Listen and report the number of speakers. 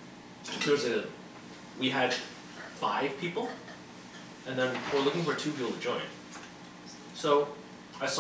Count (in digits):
1